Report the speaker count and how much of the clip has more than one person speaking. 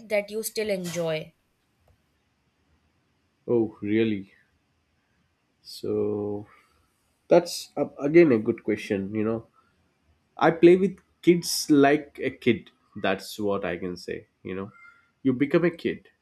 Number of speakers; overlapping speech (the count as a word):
two, no overlap